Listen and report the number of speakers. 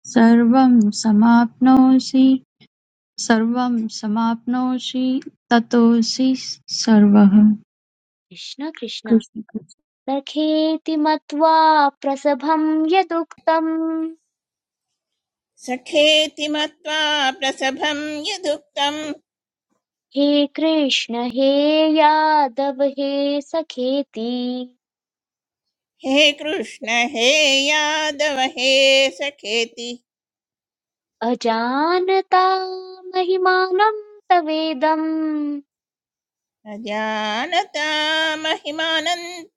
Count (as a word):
three